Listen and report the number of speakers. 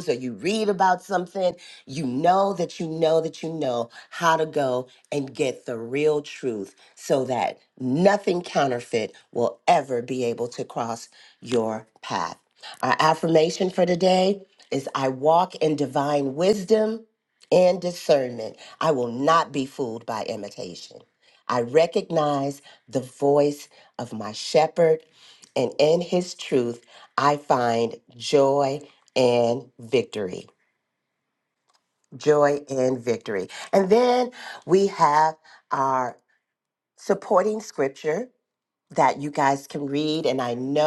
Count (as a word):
one